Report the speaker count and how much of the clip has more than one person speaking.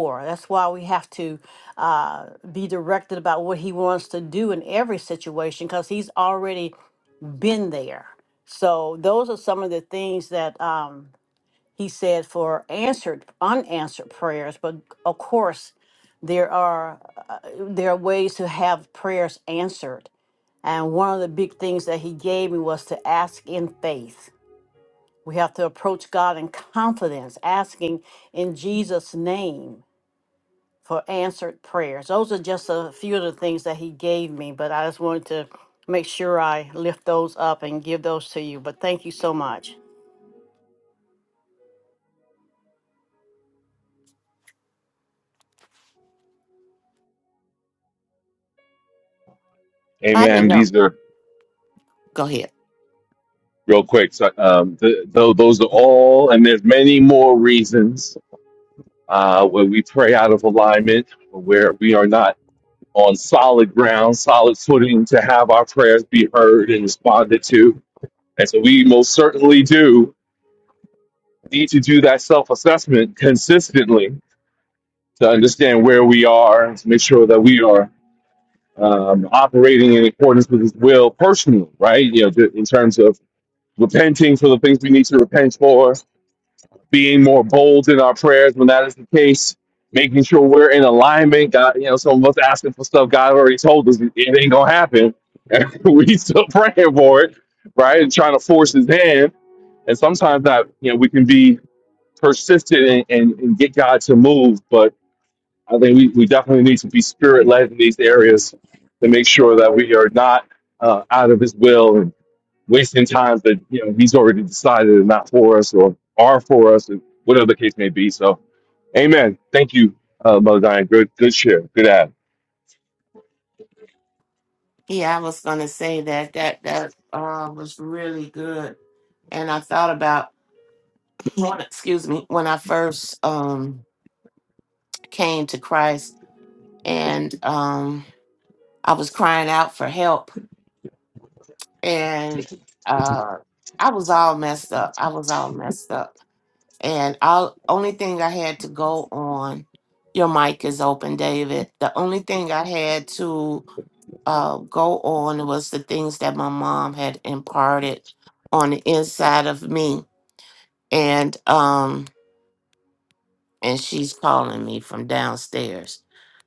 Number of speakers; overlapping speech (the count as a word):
three, under 1%